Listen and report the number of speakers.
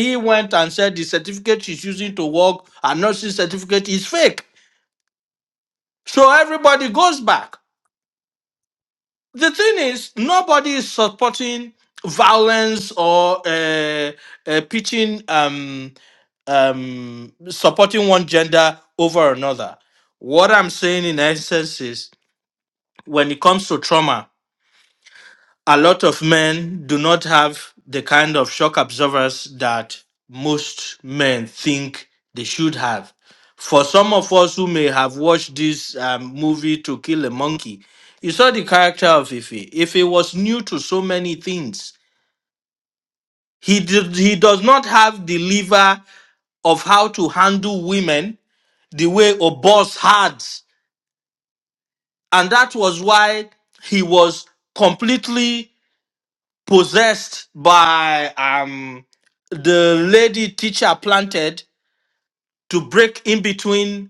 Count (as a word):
one